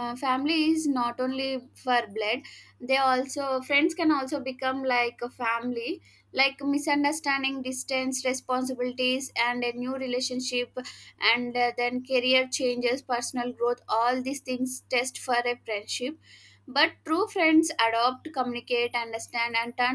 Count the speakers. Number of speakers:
one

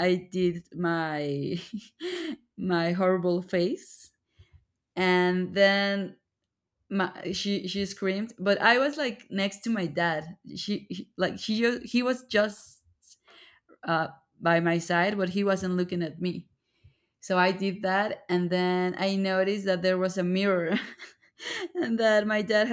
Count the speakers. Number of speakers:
one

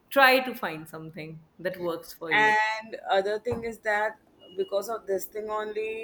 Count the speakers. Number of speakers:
two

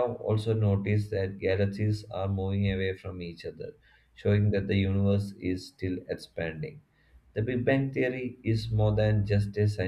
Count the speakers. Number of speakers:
one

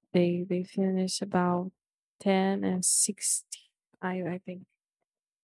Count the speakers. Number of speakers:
one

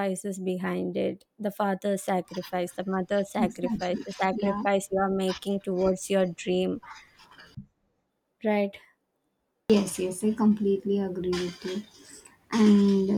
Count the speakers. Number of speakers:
two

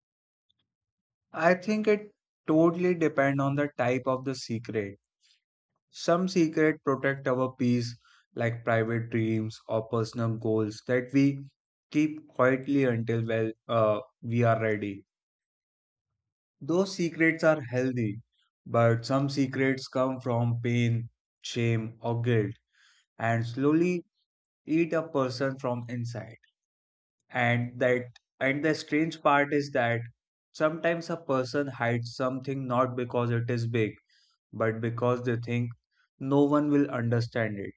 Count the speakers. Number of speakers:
one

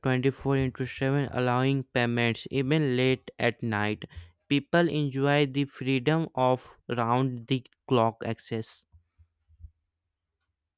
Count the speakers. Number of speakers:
one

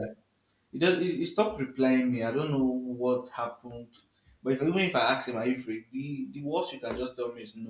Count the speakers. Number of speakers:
one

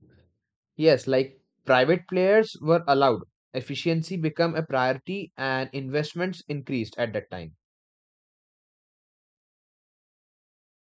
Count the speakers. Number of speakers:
one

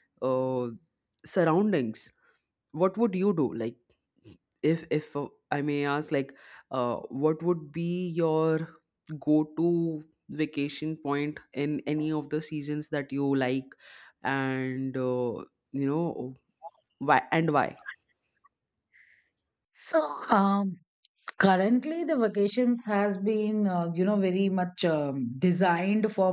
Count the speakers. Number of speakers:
two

